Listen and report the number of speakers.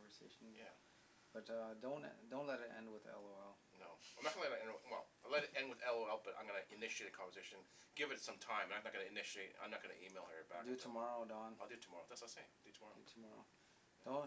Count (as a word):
two